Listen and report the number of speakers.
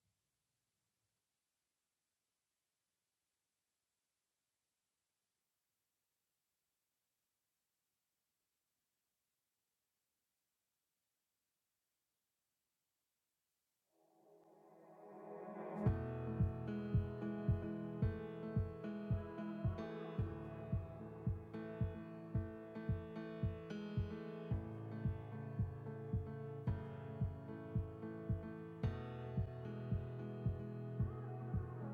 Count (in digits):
0